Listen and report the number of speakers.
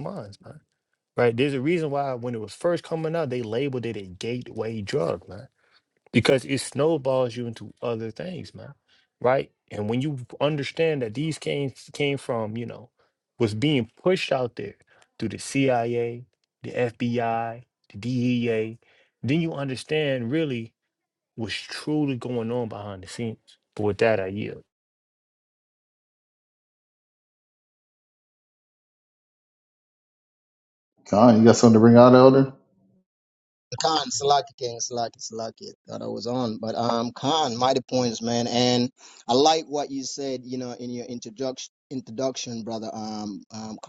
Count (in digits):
3